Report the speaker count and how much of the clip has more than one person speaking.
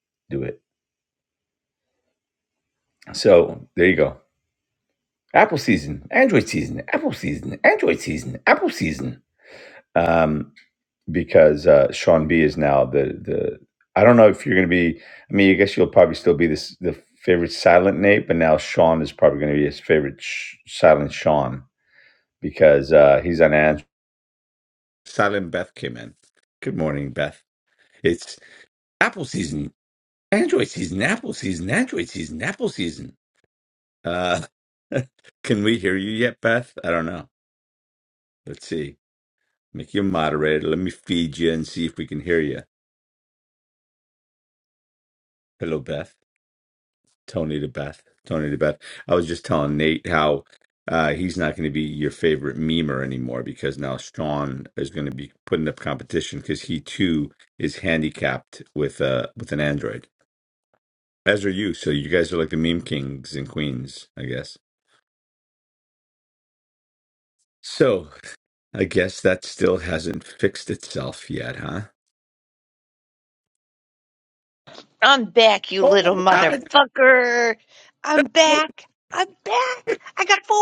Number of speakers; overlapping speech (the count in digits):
2, about 1%